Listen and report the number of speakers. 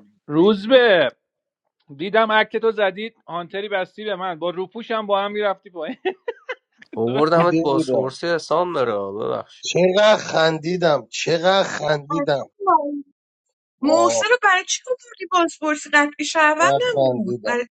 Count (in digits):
4